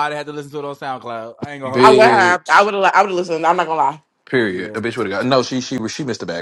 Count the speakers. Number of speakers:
three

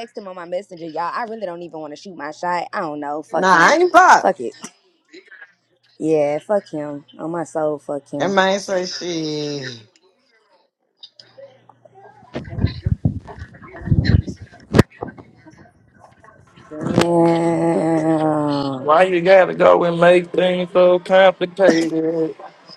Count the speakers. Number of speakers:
three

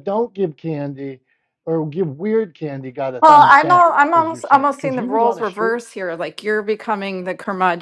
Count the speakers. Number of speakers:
two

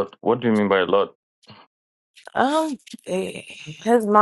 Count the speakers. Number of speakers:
two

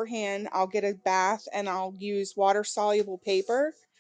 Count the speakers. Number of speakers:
one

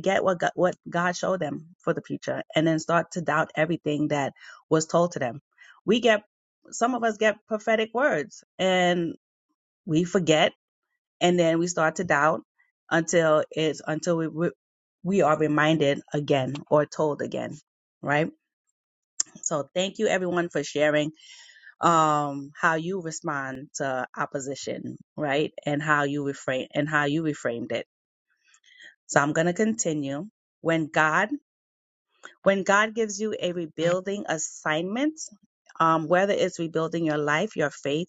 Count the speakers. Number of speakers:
one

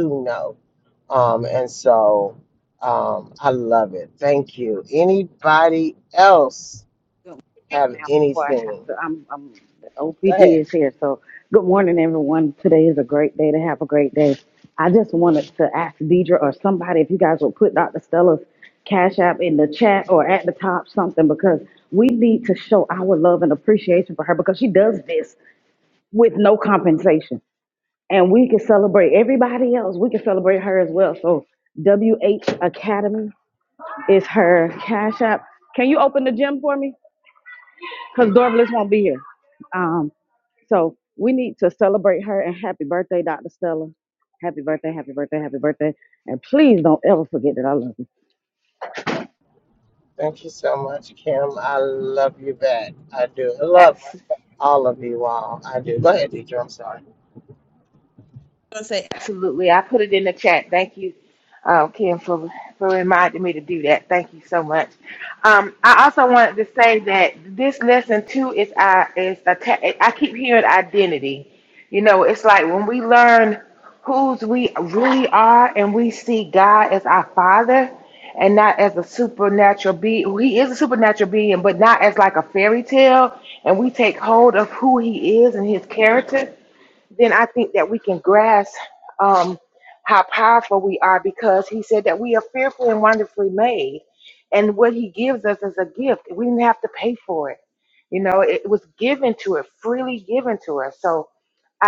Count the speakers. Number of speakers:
three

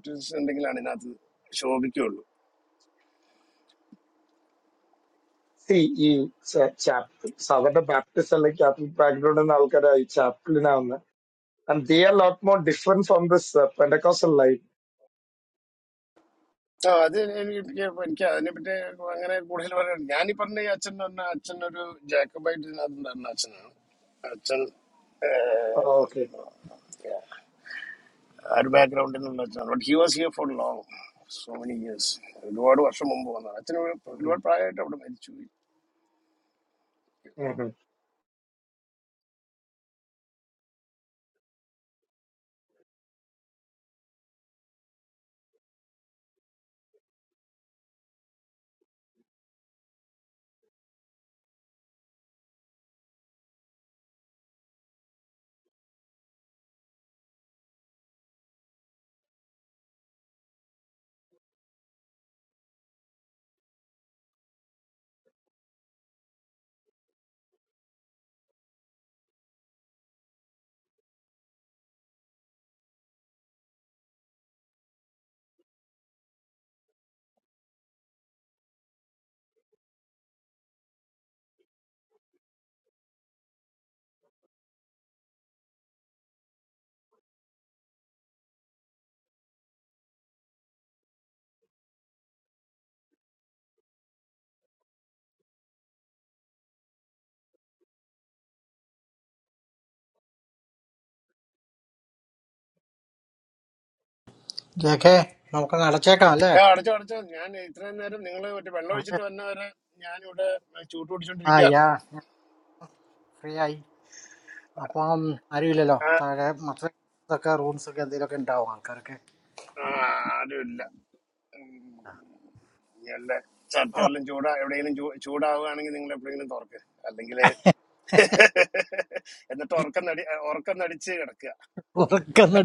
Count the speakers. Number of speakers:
three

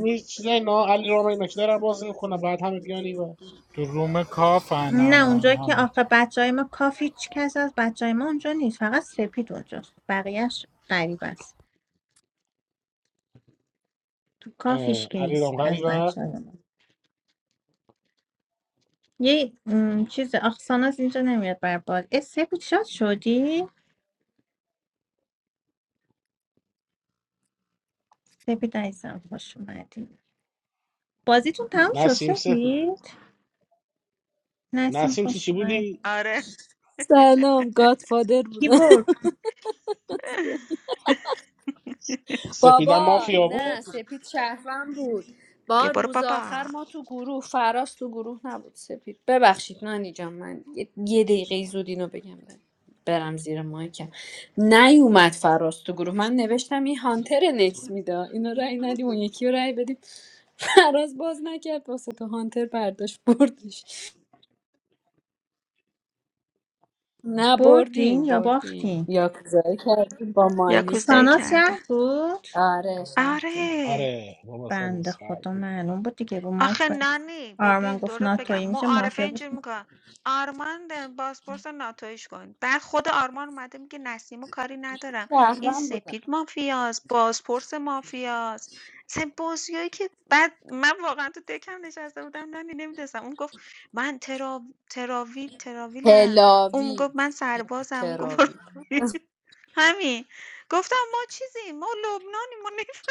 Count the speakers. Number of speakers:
five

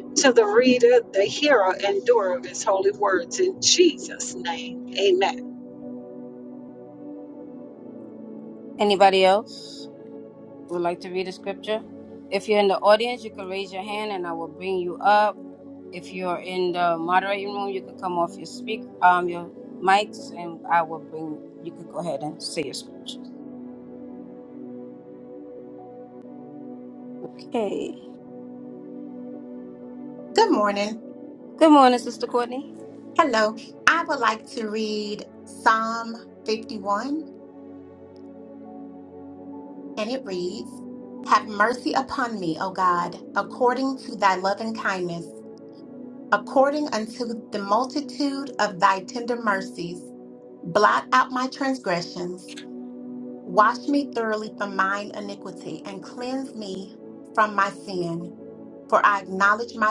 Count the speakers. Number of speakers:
three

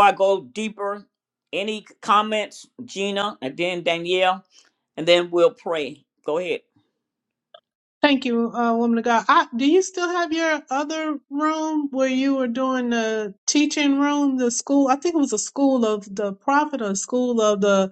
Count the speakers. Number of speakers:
two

